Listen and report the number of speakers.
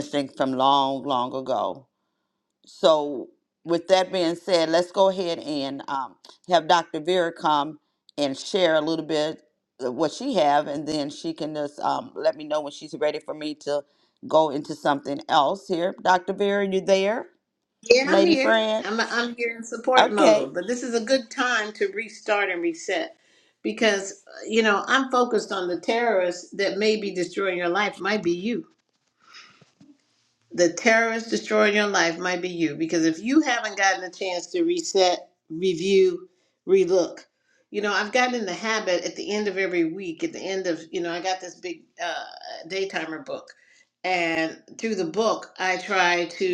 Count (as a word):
two